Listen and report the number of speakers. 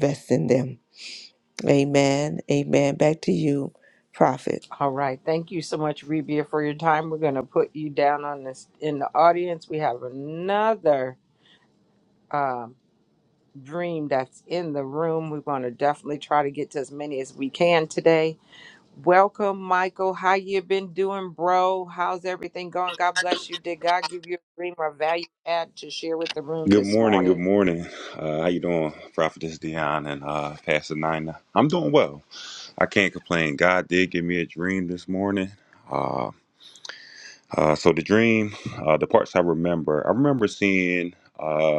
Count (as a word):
three